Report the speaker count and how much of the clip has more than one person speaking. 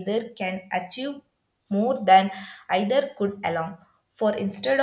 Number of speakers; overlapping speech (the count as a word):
one, no overlap